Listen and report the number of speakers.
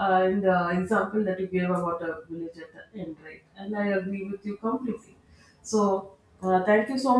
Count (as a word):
one